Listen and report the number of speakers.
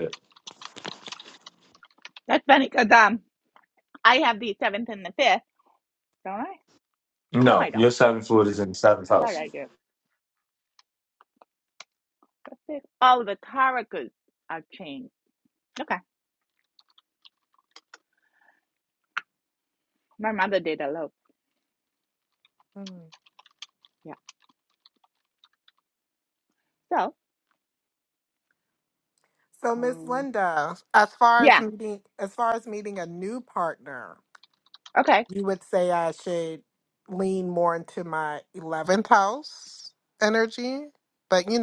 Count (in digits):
3